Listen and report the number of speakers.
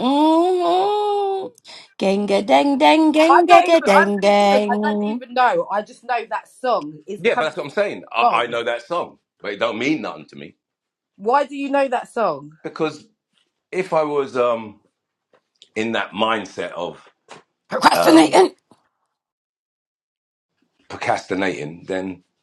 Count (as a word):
three